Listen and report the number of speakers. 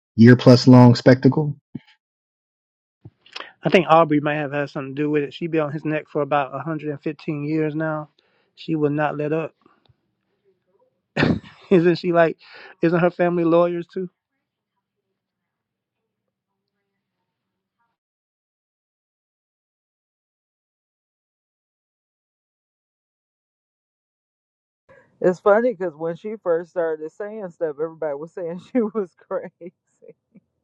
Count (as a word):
three